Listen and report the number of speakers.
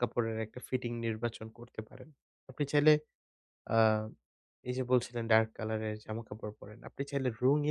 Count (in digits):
1